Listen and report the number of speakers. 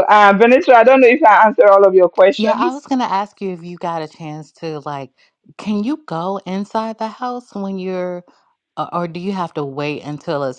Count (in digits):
2